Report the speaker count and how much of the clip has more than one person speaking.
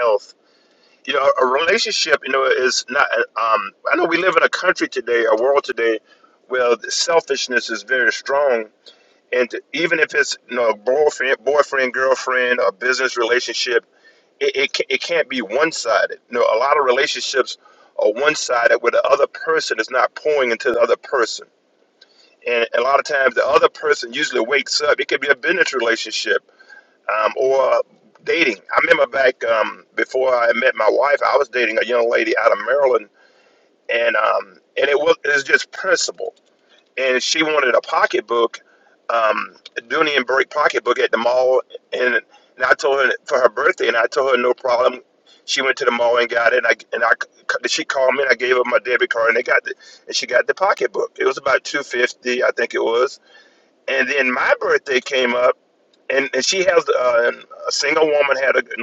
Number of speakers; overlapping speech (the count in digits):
1, no overlap